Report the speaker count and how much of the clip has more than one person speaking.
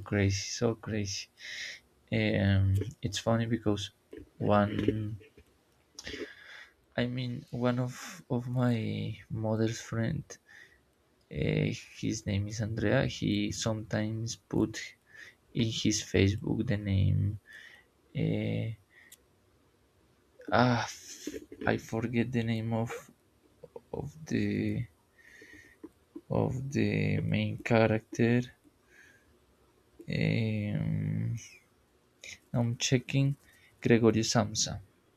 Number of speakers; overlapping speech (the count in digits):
1, no overlap